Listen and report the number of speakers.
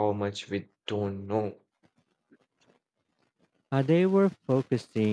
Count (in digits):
2